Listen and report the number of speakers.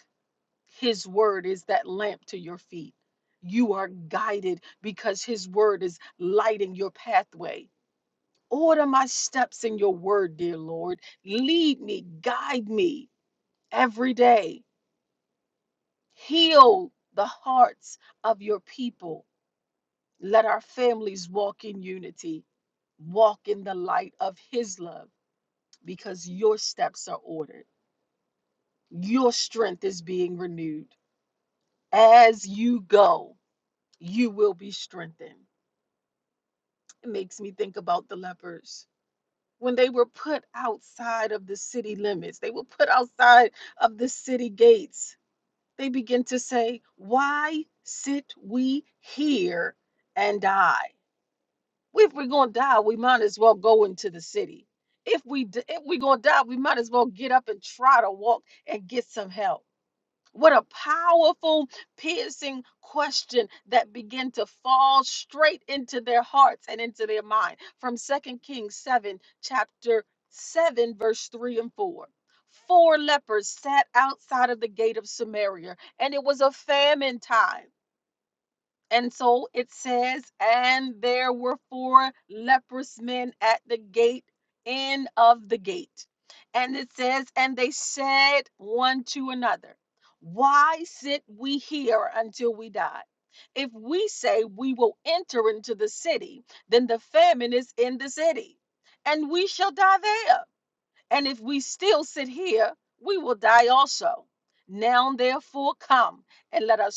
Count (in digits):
1